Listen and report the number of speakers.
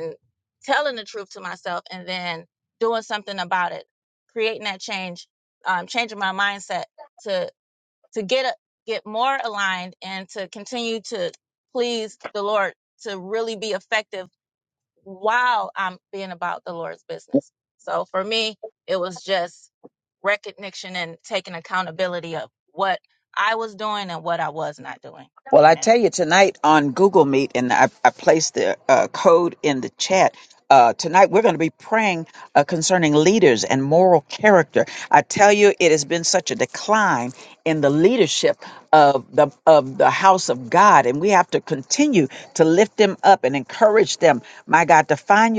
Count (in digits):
2